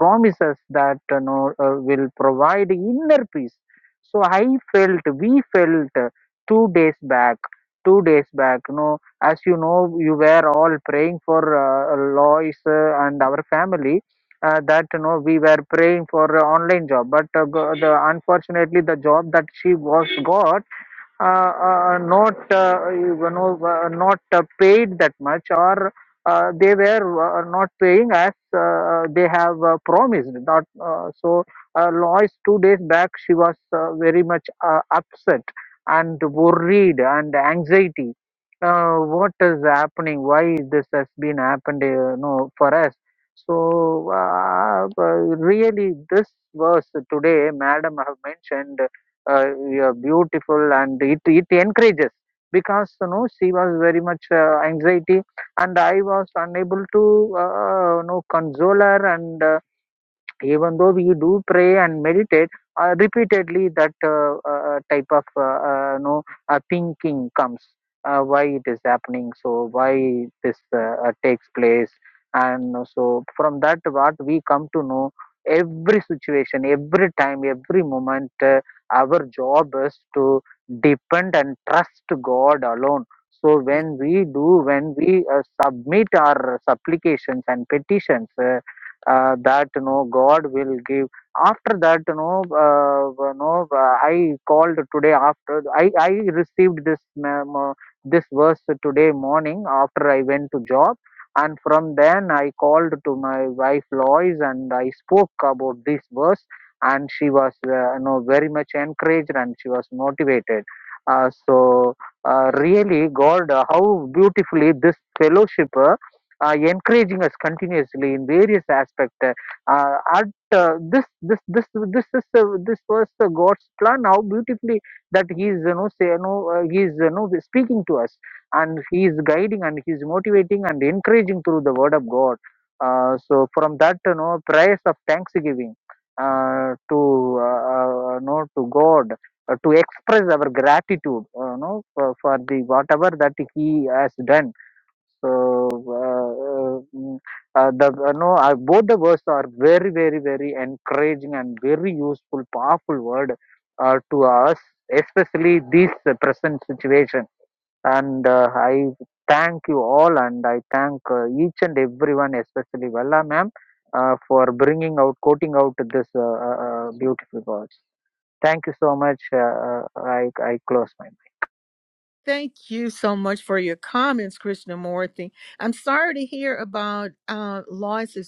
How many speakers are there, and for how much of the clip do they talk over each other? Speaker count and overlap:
two, under 1%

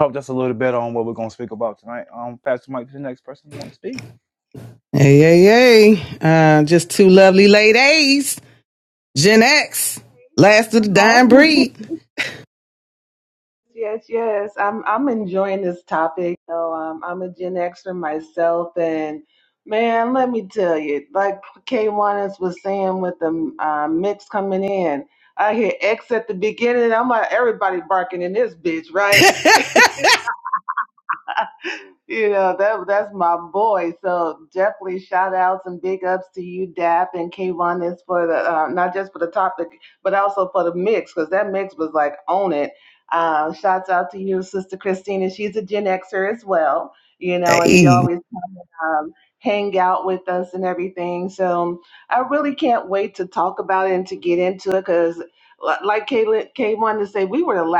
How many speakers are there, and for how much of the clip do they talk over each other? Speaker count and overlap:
three, about 2%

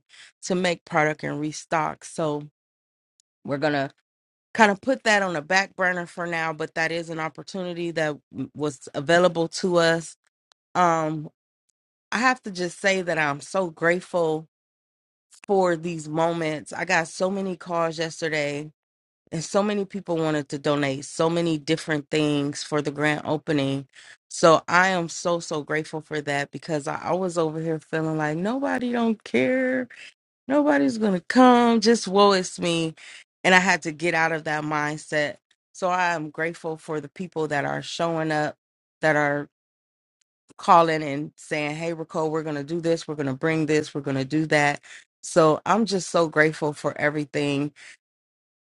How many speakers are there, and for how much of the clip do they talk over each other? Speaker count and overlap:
one, no overlap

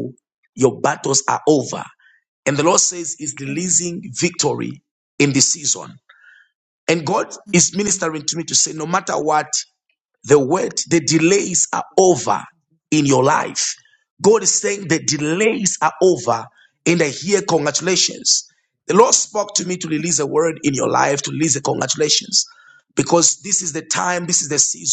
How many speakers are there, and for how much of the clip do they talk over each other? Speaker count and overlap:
one, no overlap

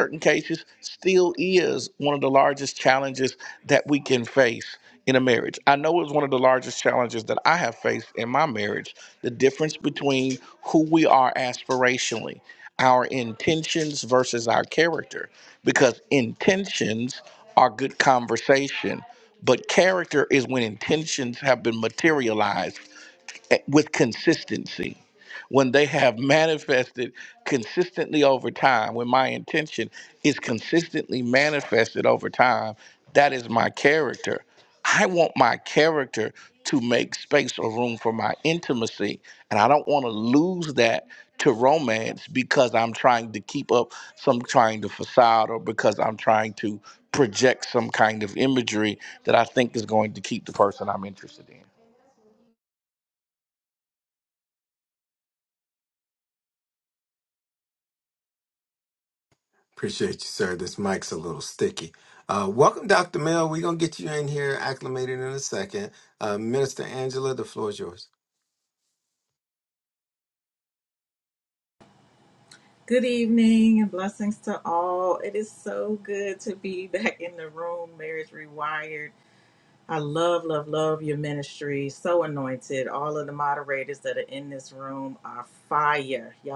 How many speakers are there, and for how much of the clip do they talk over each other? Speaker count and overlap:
three, no overlap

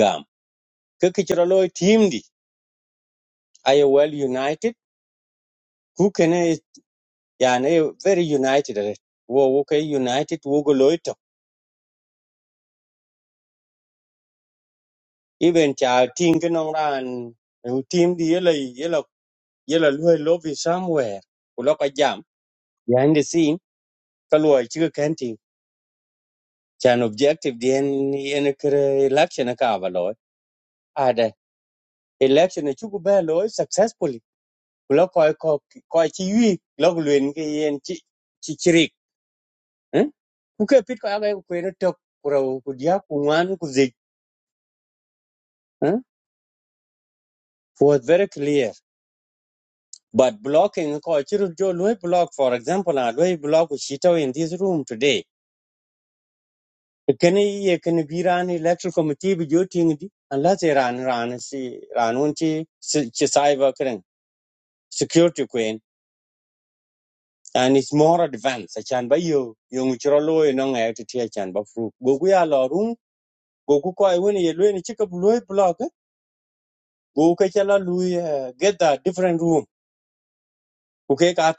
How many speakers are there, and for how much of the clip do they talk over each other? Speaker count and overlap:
one, no overlap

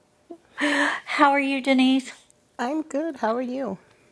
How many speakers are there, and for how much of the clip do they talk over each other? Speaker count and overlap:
two, no overlap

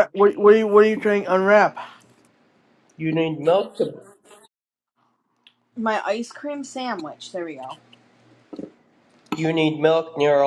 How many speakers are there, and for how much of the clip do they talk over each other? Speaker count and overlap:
three, no overlap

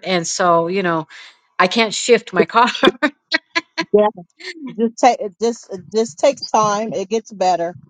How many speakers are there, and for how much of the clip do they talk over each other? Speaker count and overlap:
two, no overlap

